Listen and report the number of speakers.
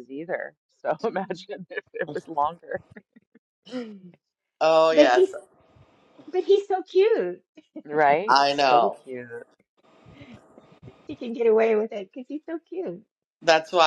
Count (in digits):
3